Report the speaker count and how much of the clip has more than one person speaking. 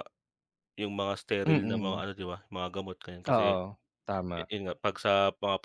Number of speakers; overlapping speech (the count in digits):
2, about 17%